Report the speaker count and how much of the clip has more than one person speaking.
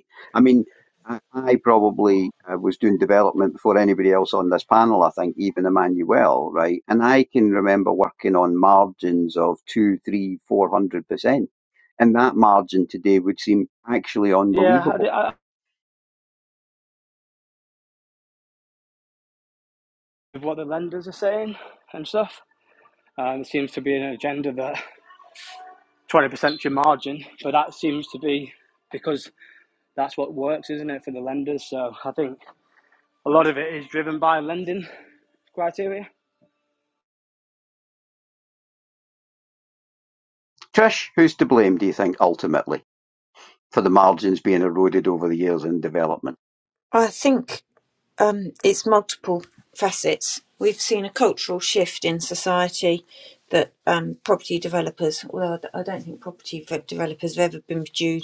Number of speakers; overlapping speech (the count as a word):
three, about 1%